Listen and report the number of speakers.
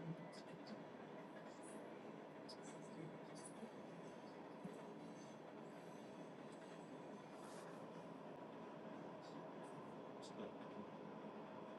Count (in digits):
0